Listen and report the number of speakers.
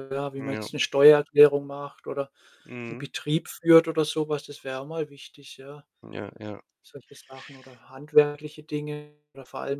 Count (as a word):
two